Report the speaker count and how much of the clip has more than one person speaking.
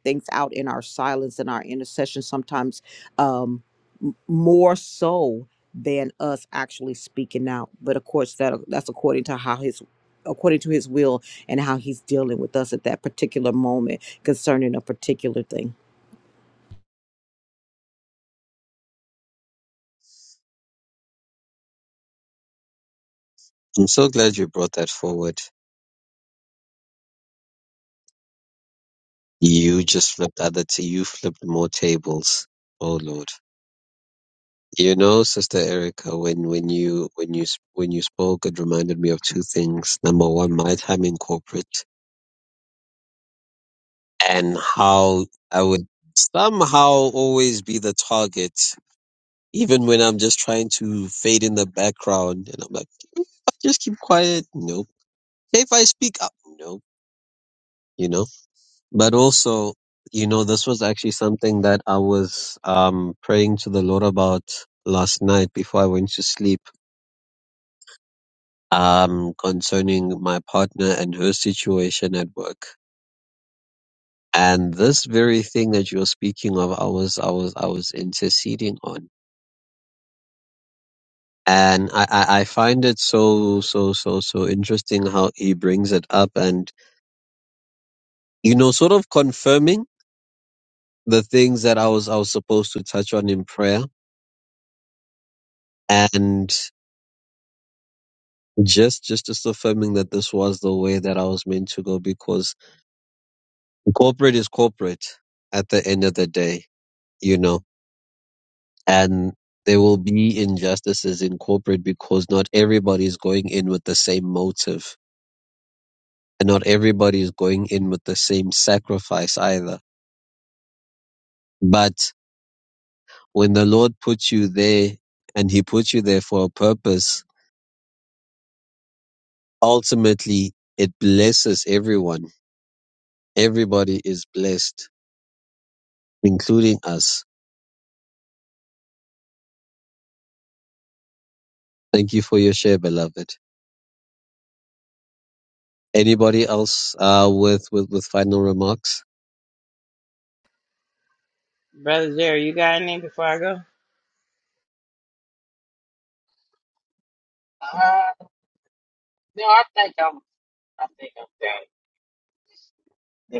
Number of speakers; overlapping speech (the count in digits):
4, no overlap